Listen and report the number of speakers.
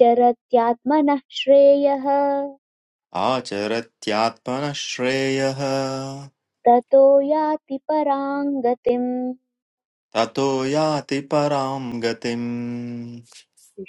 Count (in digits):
2